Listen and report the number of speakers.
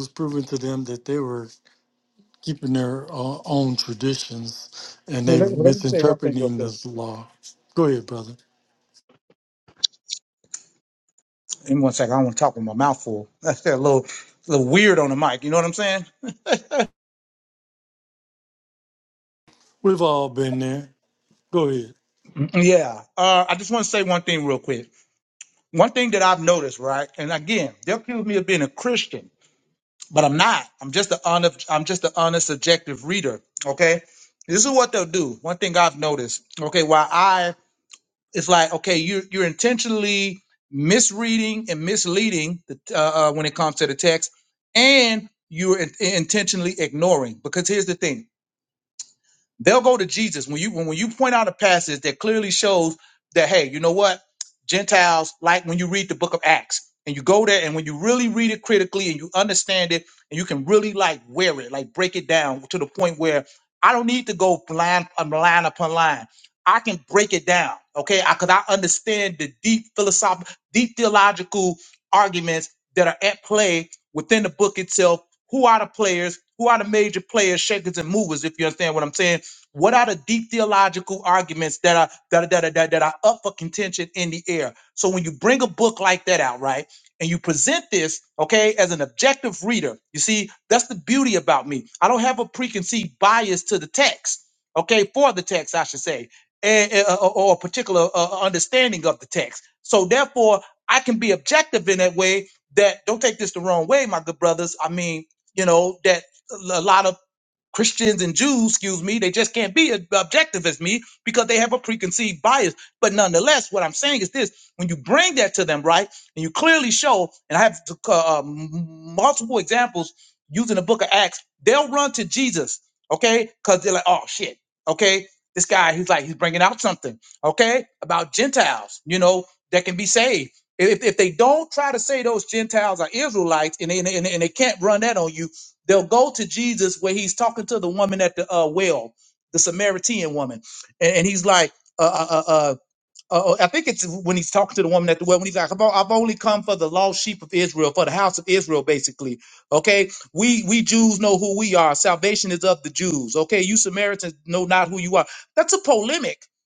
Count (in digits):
2